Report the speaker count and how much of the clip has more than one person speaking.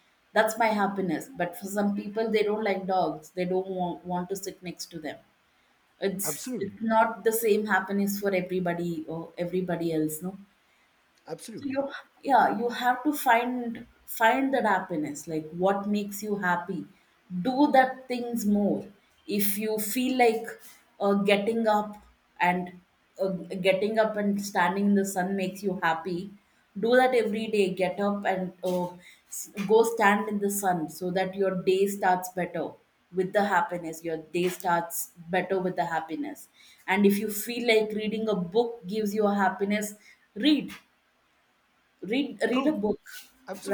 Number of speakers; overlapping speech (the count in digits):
2, about 2%